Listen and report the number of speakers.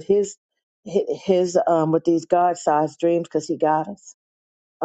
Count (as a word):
one